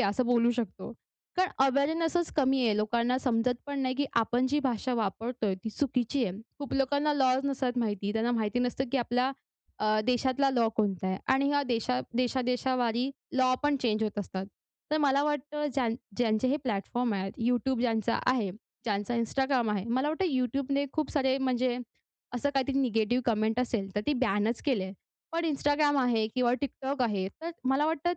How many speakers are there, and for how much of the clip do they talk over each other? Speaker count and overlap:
1, no overlap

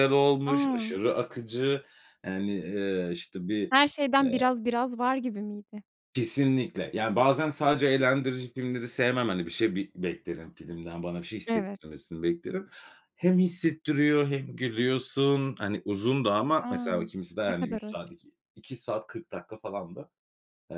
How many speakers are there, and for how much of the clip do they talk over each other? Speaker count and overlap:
2, about 9%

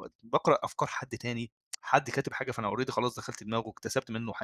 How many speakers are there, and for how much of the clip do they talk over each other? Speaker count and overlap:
1, no overlap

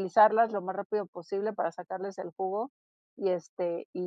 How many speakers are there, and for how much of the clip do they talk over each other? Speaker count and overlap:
1, no overlap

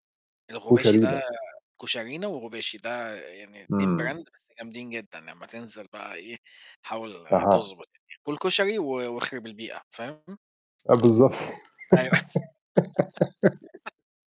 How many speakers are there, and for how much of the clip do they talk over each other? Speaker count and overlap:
2, about 9%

